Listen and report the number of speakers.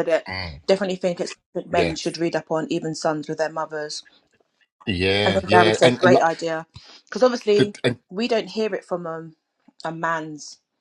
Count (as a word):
two